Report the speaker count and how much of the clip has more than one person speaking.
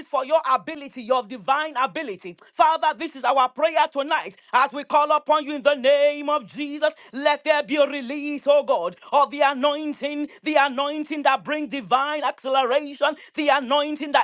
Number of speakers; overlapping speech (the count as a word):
one, no overlap